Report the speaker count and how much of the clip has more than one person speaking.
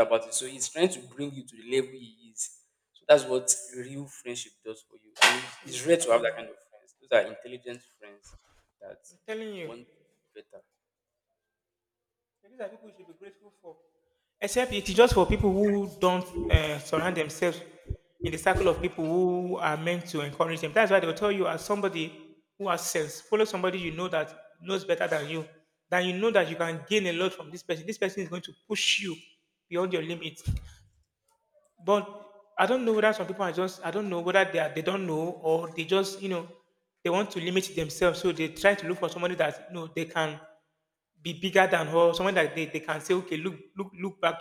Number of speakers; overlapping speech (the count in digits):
2, about 2%